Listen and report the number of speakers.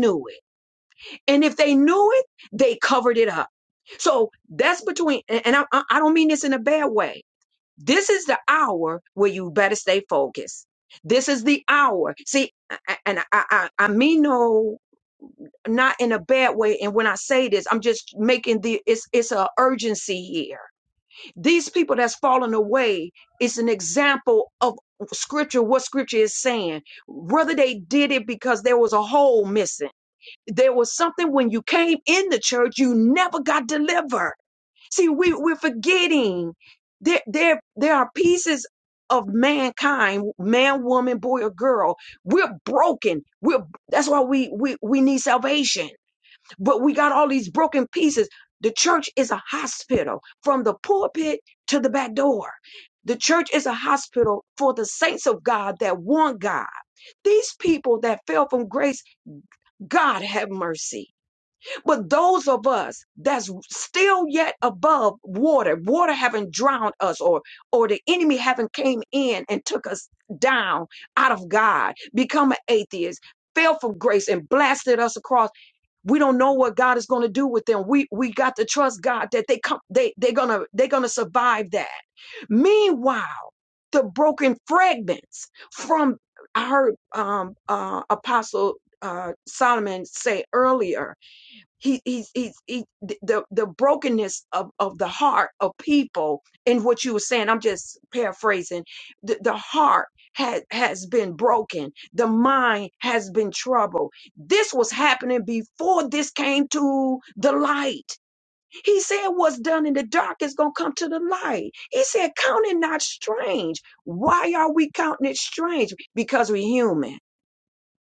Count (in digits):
1